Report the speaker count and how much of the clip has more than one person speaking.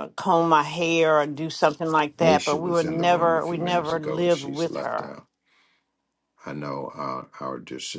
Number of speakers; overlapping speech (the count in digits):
2, about 37%